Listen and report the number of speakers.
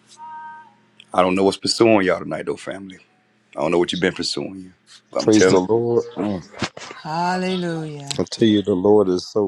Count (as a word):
three